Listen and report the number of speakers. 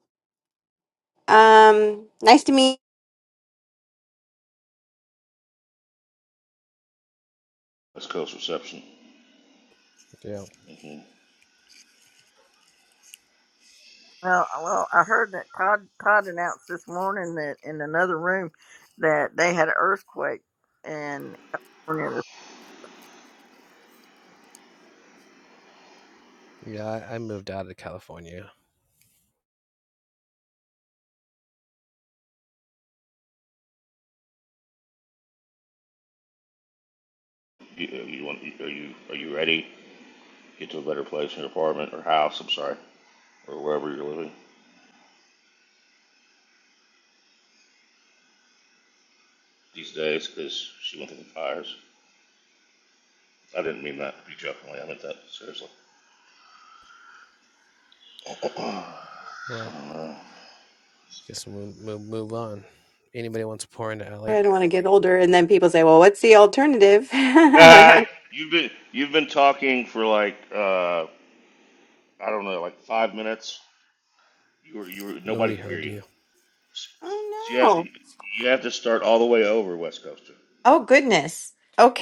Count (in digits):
4